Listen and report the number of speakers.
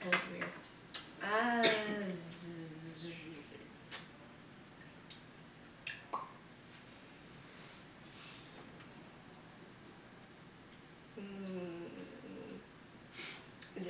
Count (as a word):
one